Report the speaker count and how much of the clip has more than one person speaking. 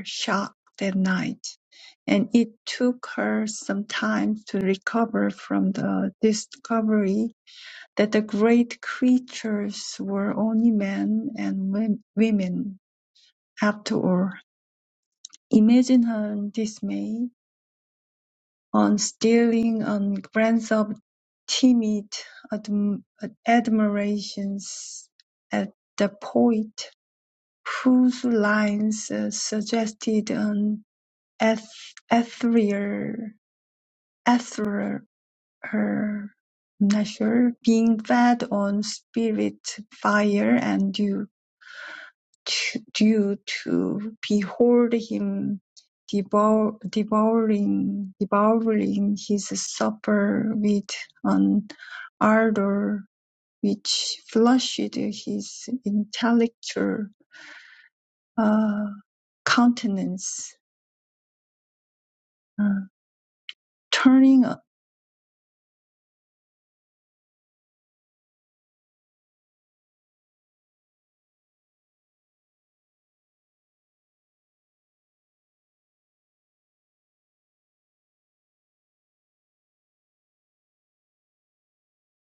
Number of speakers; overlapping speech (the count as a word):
one, no overlap